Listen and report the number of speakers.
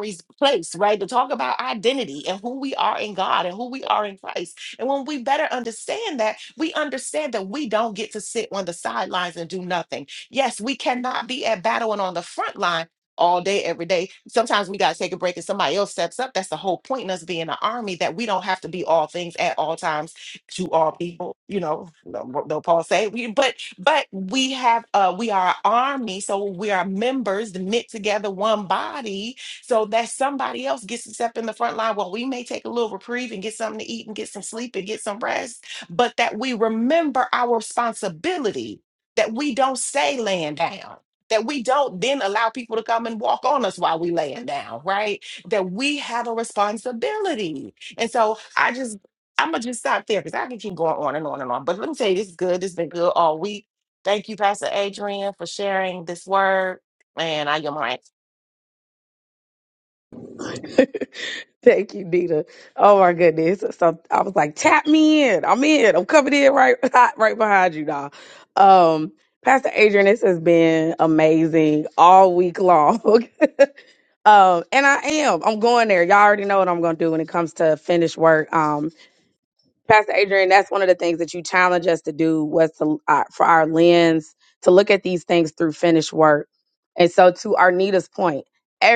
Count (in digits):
2